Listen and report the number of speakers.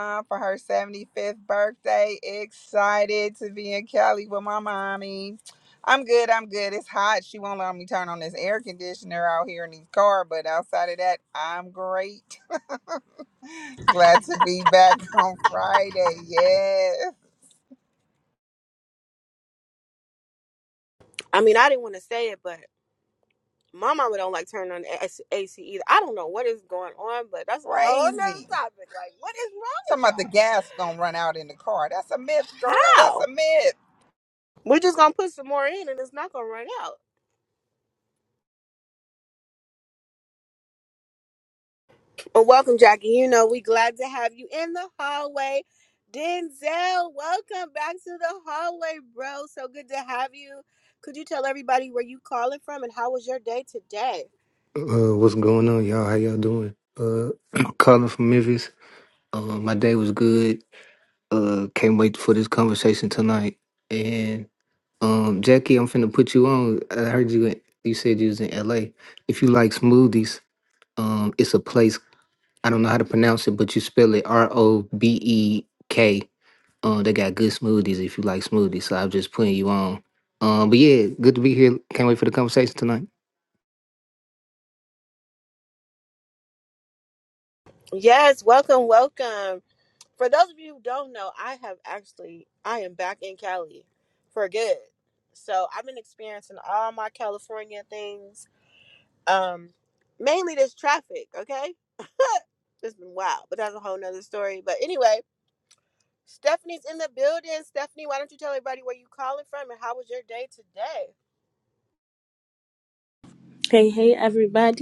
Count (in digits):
4